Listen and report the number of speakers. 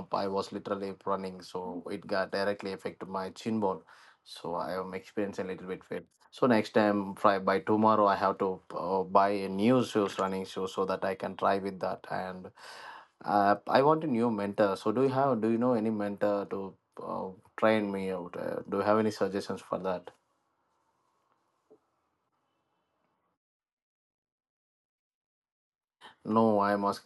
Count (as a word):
one